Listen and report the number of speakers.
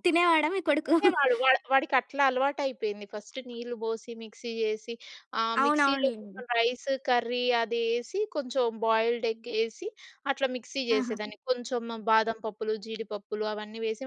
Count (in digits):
2